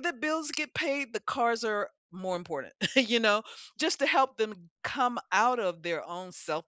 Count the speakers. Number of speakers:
one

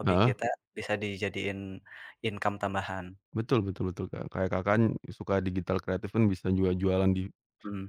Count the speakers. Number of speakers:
two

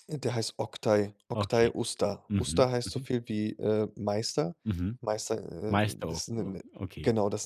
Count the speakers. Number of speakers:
two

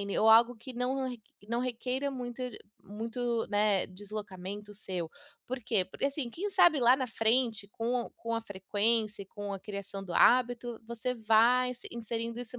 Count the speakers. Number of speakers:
one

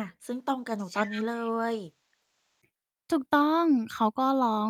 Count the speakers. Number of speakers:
two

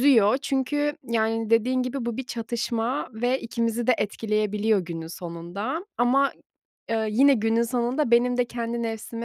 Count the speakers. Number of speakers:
one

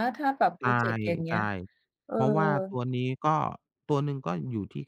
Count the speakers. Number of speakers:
two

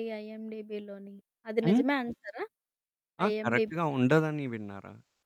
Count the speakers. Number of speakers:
two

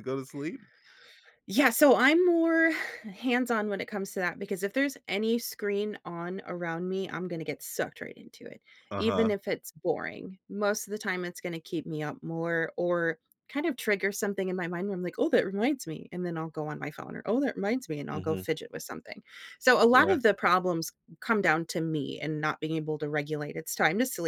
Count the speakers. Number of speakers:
two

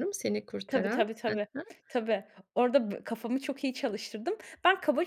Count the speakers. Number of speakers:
two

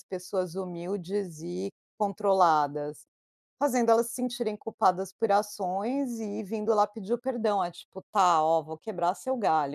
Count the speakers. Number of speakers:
one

